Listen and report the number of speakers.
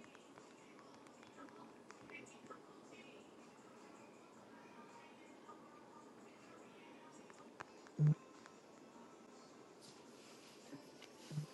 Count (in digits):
0